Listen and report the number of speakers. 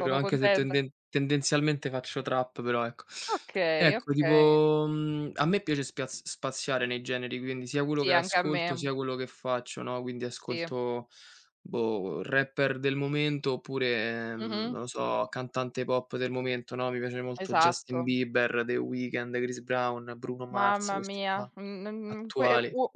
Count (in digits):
2